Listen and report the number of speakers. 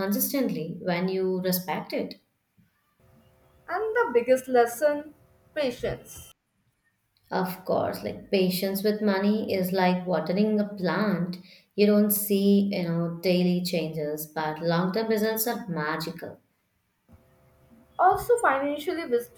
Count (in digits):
2